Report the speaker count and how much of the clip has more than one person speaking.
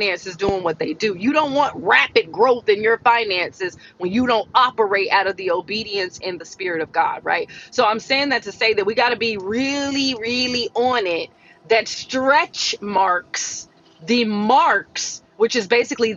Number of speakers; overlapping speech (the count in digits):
1, no overlap